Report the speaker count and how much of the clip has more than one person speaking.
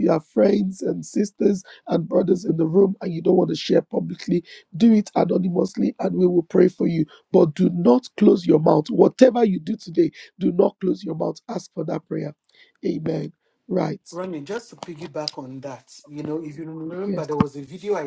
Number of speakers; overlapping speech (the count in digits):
2, about 1%